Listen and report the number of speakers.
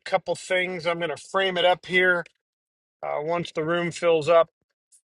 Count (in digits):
1